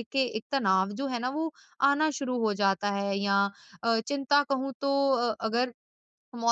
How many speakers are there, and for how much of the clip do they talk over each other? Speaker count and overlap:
1, no overlap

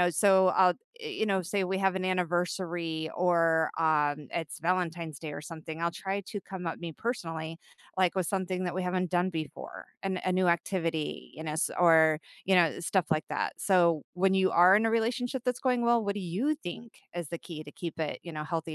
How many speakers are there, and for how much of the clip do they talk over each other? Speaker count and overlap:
1, no overlap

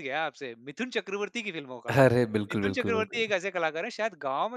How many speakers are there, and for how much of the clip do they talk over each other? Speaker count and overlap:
2, about 18%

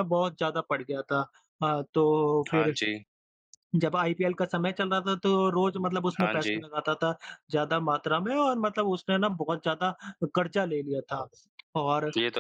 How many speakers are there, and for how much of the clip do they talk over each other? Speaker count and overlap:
2, about 6%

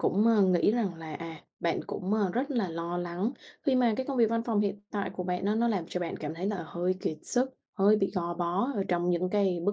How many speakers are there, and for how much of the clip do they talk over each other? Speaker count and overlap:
1, no overlap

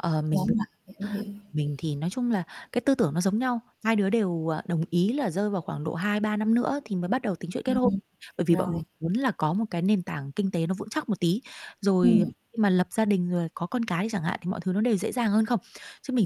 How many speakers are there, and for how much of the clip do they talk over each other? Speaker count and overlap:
2, about 7%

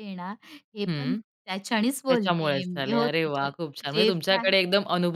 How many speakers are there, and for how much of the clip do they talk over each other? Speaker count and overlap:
2, about 47%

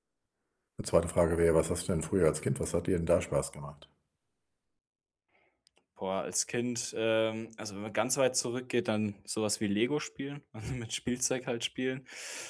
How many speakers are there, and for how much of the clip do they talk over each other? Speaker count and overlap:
2, no overlap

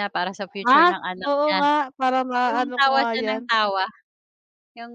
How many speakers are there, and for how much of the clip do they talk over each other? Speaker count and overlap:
2, about 40%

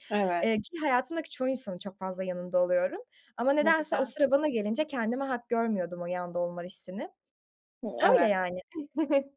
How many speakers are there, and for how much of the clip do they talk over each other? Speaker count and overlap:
2, about 9%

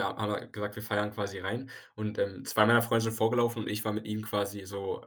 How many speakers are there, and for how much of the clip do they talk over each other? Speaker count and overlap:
1, no overlap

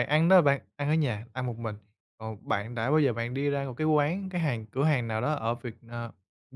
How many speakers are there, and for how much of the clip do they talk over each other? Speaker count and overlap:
1, no overlap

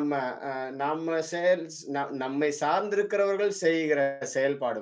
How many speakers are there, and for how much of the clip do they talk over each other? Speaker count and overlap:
1, no overlap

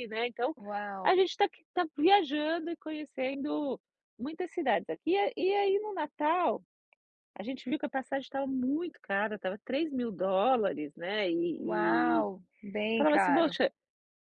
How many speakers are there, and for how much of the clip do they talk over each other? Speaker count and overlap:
2, about 9%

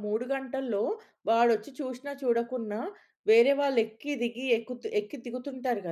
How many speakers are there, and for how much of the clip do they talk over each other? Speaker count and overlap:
1, no overlap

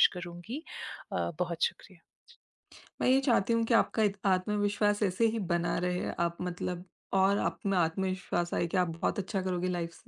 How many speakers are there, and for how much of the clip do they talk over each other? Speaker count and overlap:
2, no overlap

